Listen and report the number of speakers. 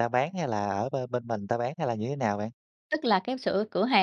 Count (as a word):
two